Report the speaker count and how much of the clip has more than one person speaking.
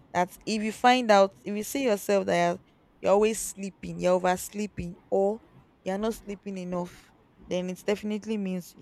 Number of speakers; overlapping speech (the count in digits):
1, no overlap